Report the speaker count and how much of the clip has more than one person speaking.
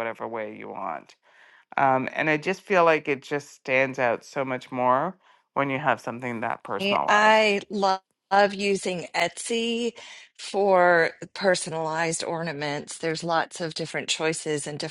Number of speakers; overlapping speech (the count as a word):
two, about 4%